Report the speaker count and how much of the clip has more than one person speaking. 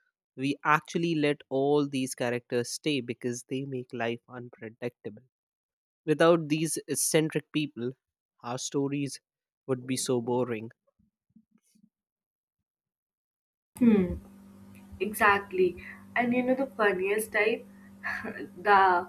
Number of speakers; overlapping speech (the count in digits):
2, no overlap